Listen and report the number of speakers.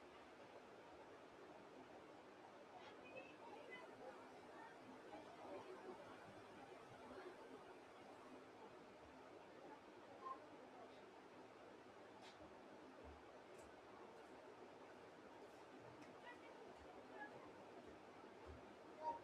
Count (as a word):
zero